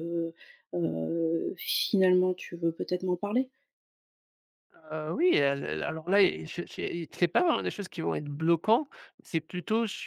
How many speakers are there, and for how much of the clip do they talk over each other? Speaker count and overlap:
2, no overlap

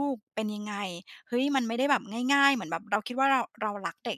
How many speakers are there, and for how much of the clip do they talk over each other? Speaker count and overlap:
1, no overlap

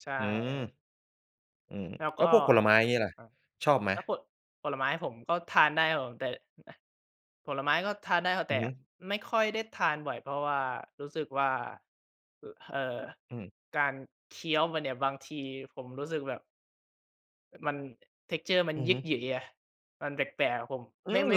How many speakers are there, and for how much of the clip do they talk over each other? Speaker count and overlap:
2, about 5%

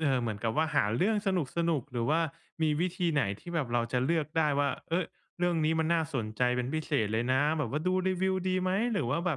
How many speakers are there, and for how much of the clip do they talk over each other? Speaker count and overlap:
1, no overlap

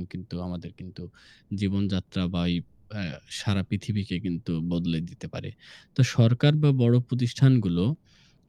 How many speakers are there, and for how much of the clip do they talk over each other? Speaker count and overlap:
1, no overlap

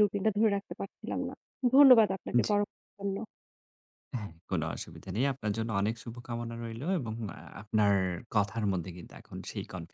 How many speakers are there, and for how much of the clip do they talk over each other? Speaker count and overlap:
2, about 1%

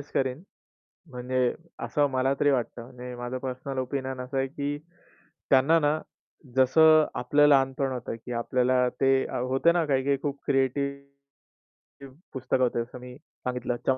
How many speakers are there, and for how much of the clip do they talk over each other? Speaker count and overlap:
1, no overlap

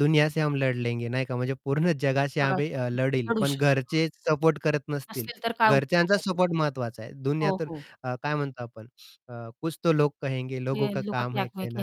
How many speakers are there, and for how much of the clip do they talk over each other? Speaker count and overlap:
2, about 31%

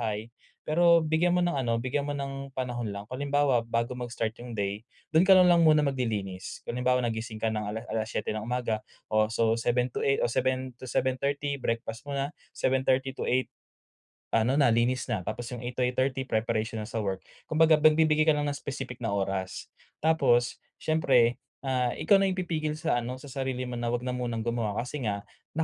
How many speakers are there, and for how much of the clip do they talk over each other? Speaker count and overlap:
1, no overlap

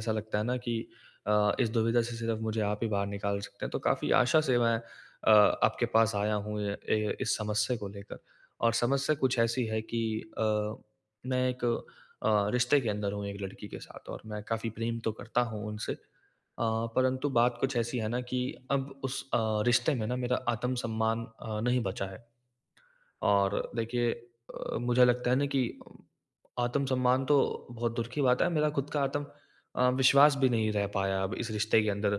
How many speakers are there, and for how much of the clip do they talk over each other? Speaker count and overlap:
1, no overlap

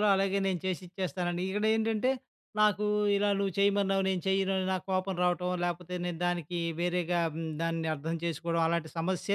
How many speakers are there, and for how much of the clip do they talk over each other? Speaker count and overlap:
1, no overlap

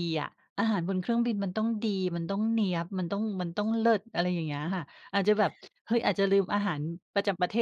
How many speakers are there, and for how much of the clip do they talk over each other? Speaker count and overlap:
1, no overlap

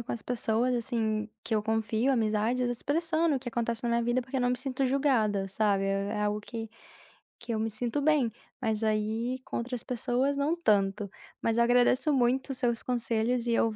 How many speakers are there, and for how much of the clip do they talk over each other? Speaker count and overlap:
1, no overlap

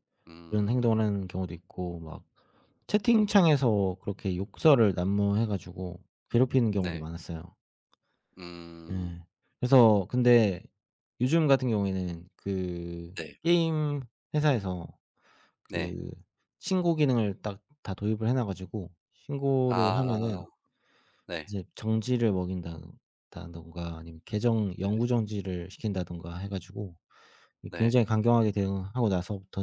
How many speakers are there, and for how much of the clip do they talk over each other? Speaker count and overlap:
2, about 7%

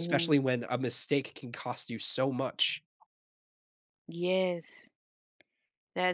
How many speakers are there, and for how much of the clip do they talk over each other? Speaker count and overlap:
2, about 6%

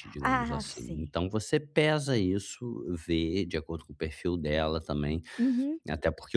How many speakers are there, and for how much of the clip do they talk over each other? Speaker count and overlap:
2, about 13%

